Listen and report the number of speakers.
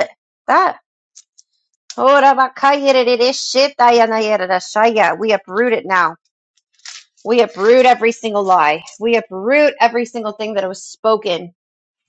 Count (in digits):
1